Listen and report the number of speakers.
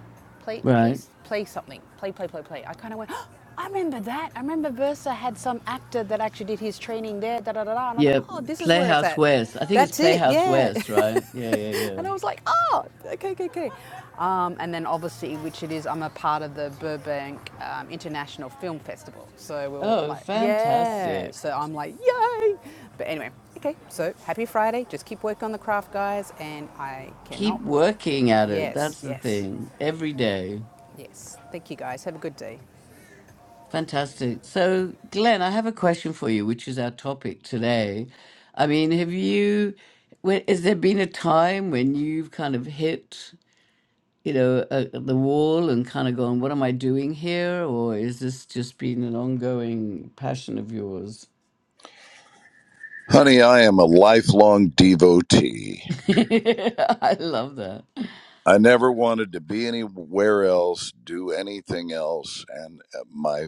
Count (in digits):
3